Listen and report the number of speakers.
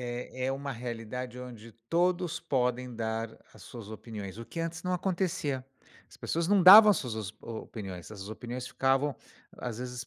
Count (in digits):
1